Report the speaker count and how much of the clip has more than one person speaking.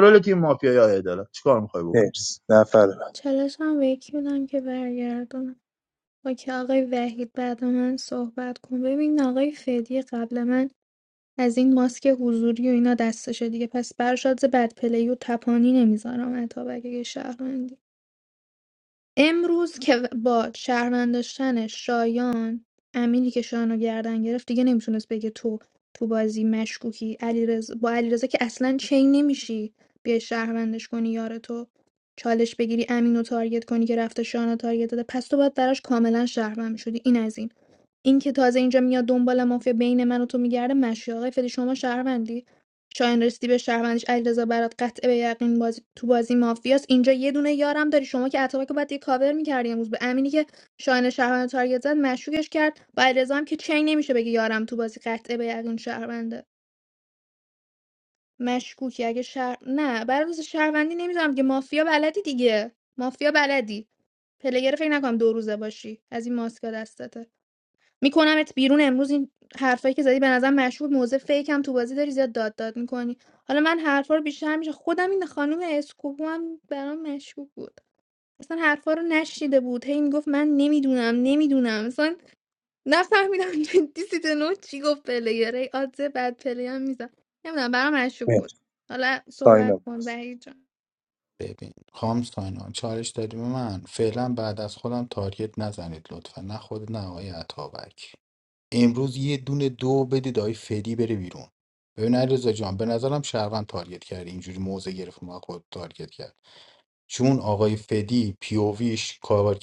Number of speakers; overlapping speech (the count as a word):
four, under 1%